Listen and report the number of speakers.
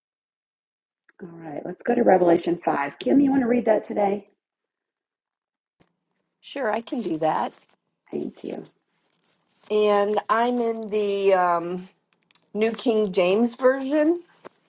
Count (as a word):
two